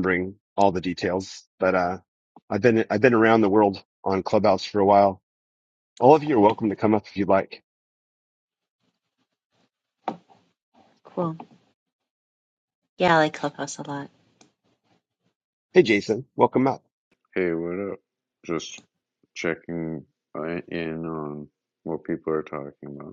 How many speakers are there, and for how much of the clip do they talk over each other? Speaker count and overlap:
3, no overlap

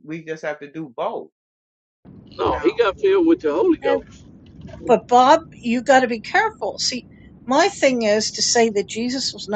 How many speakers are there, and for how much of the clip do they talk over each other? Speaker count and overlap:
3, about 8%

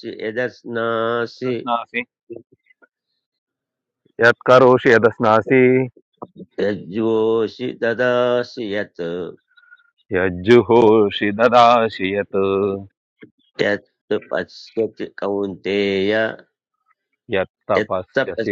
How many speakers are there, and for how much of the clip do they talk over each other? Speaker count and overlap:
2, about 4%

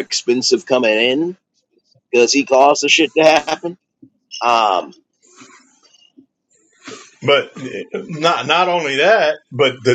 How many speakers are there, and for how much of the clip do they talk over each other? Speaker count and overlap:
2, no overlap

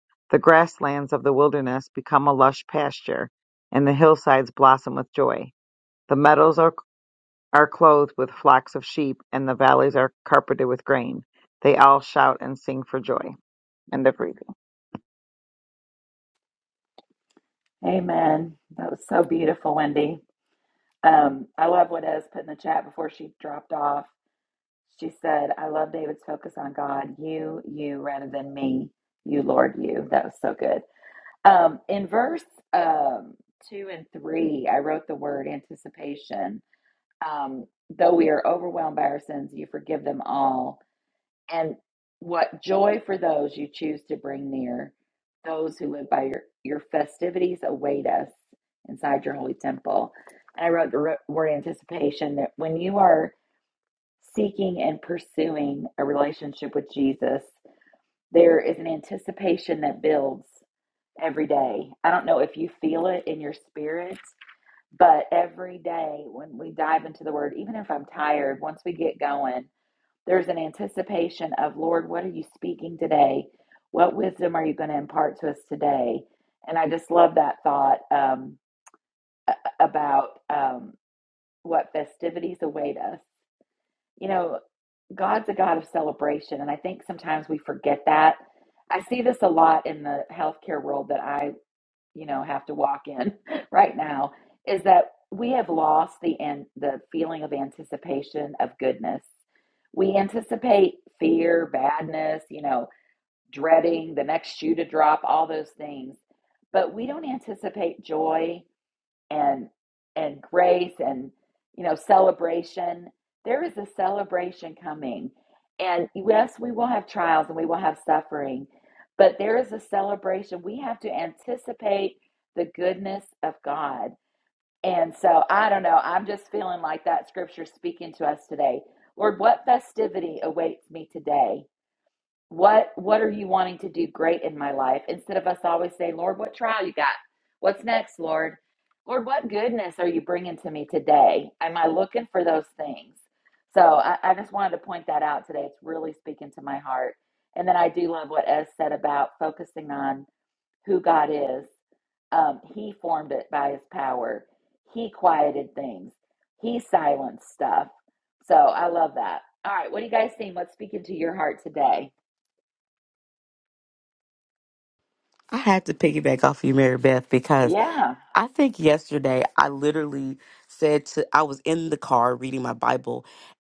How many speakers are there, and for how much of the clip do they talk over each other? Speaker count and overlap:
3, under 1%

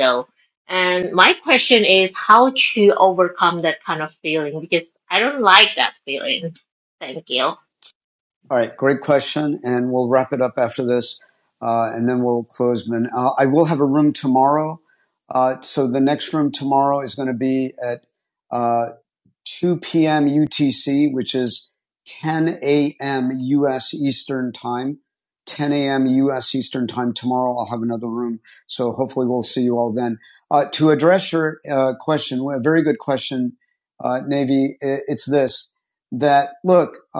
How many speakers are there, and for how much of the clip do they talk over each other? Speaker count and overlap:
2, no overlap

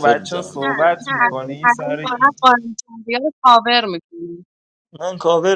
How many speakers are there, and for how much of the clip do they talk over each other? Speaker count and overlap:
3, about 27%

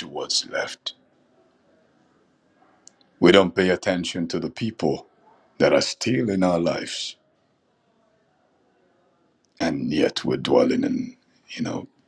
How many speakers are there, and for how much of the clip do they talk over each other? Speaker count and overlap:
1, no overlap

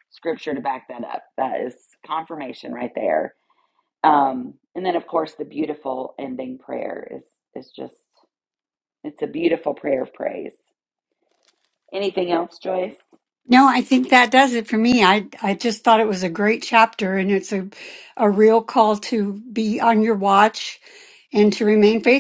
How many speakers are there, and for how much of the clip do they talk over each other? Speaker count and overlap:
2, no overlap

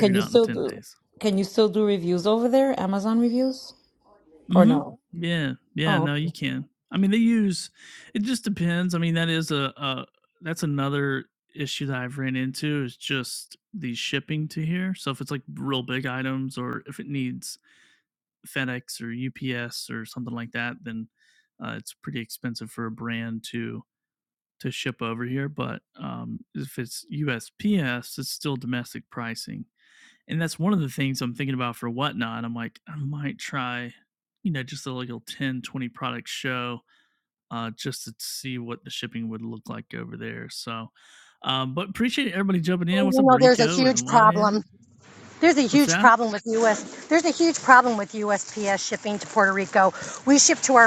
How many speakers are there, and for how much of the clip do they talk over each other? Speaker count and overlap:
3, about 7%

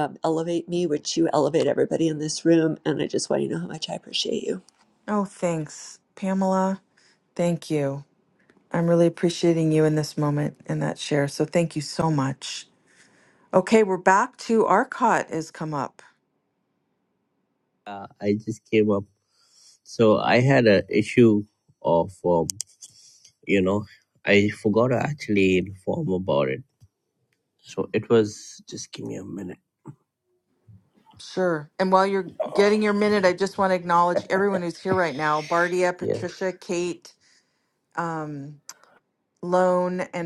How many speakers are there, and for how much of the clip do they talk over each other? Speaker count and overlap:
3, about 1%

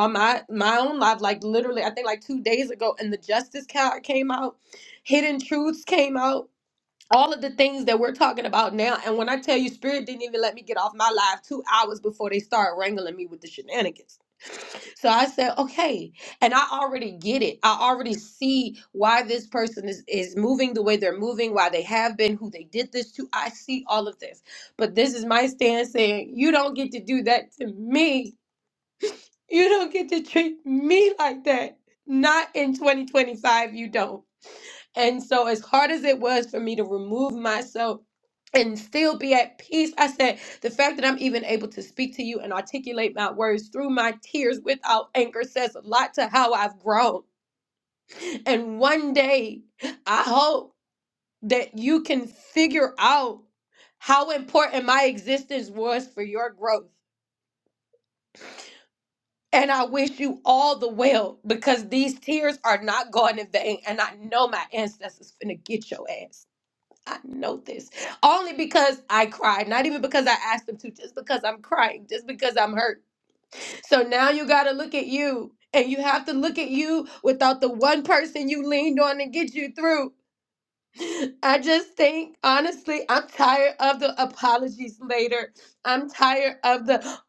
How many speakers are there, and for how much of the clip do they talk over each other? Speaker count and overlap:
1, no overlap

